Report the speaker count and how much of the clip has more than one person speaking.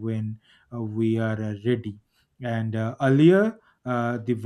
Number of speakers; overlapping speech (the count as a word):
one, no overlap